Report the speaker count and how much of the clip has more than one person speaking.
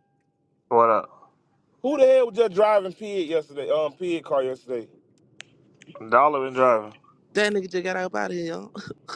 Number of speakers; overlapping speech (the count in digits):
3, no overlap